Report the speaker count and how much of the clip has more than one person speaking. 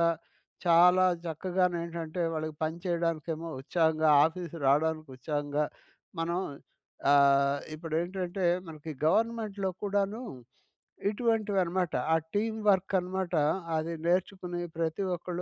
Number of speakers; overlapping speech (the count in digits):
1, no overlap